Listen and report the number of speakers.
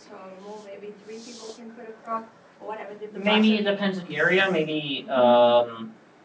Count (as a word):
two